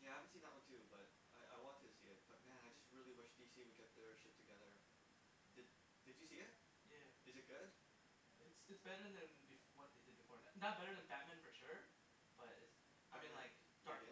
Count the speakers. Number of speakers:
two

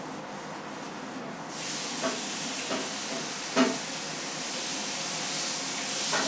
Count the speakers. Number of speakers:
zero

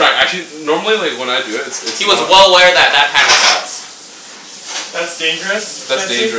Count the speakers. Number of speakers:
three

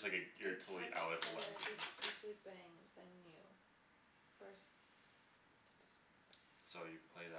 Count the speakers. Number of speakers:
two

